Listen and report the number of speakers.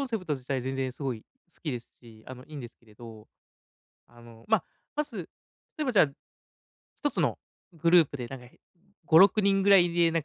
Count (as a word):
one